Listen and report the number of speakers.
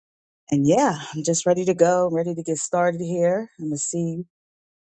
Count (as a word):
one